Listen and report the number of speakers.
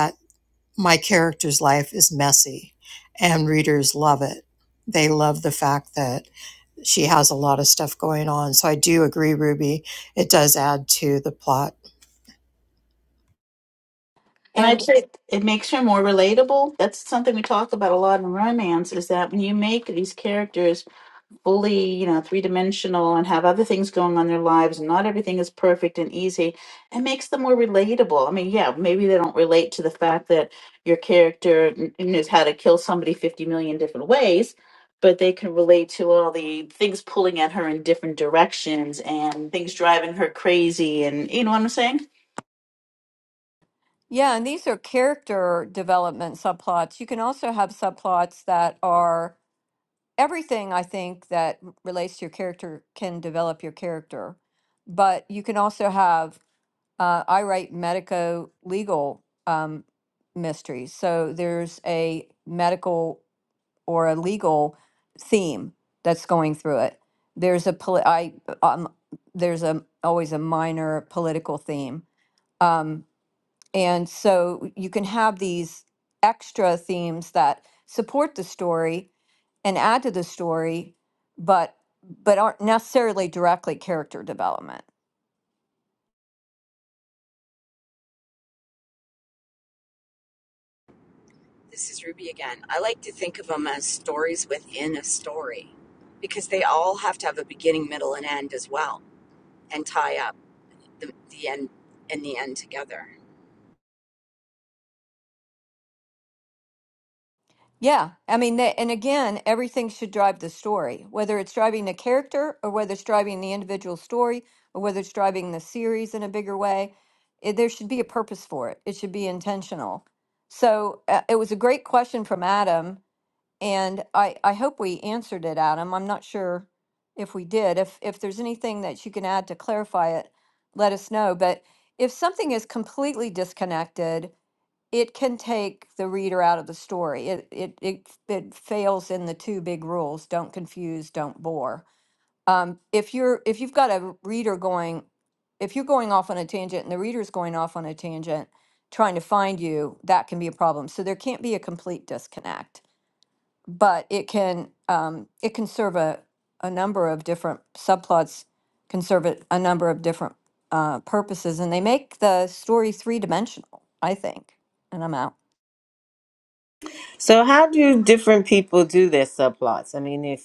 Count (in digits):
5